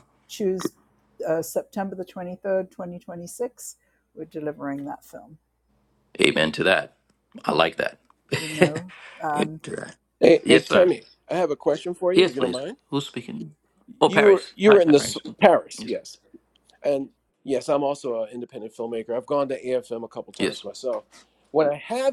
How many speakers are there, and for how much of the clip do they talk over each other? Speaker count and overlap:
three, about 12%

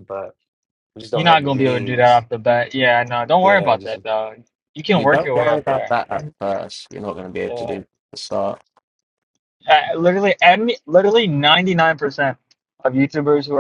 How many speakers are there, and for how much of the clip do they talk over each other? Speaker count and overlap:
three, about 20%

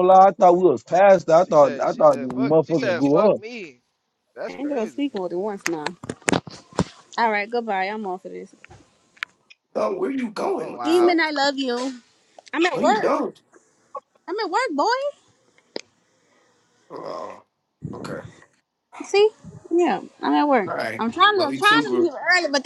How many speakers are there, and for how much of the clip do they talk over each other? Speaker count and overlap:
four, about 20%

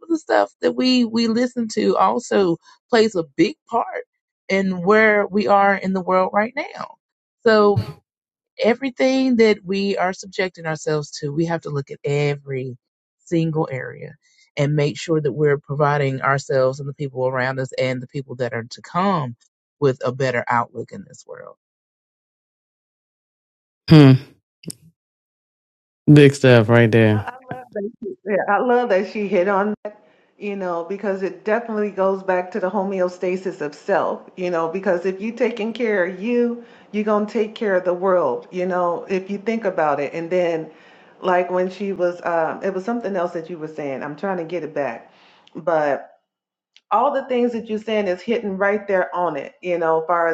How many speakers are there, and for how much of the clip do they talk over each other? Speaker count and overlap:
three, under 1%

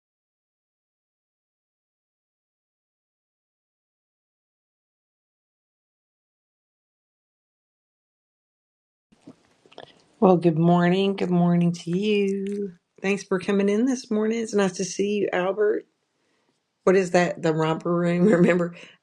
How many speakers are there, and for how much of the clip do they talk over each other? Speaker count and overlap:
one, no overlap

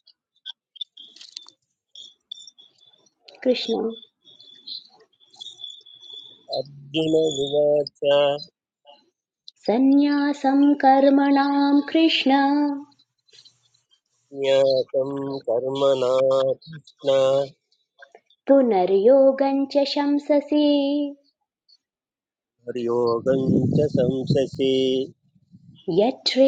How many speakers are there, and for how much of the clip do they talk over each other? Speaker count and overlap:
two, no overlap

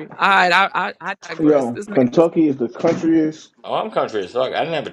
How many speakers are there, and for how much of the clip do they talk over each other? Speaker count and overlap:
three, about 18%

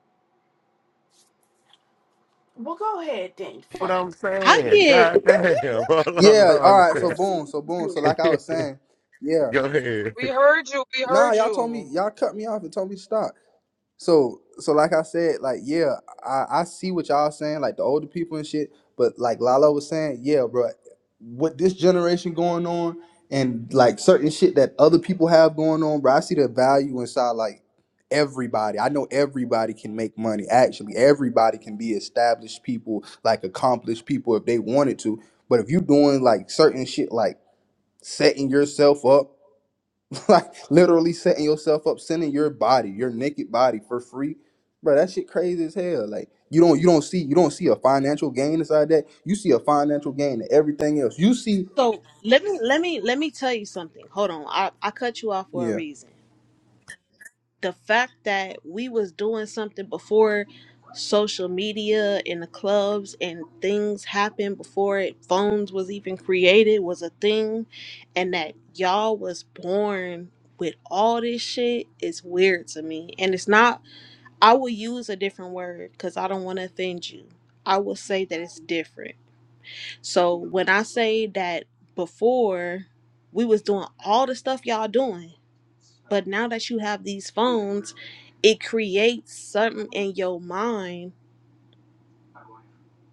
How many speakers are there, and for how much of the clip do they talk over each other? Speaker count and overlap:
five, about 4%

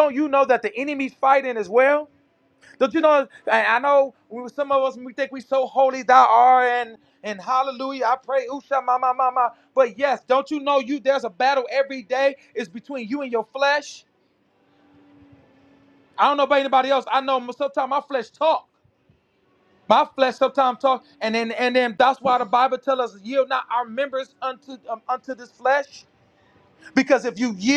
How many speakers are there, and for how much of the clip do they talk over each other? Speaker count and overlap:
one, no overlap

